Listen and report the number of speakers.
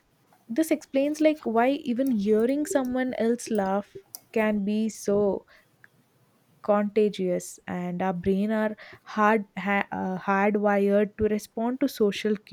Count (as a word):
one